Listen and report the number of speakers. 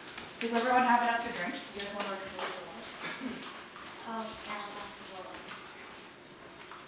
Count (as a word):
two